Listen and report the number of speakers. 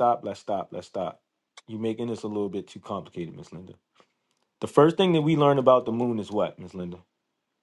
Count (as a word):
one